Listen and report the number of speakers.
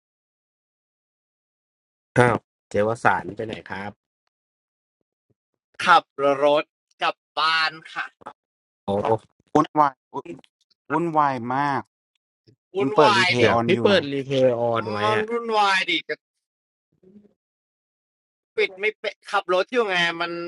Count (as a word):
three